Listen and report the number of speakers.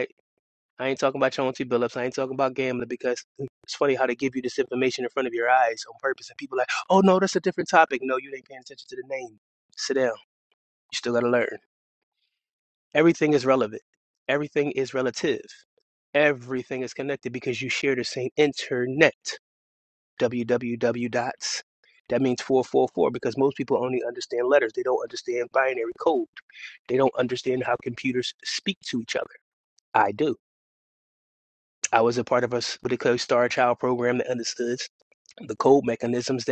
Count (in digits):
1